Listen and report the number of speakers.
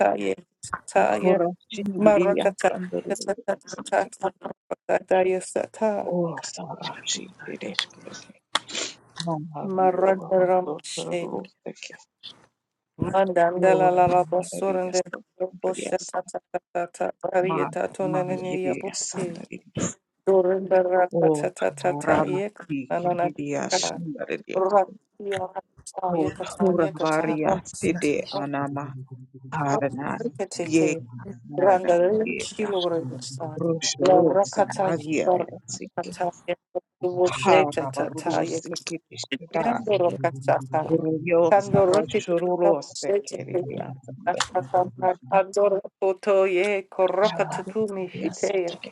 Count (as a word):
two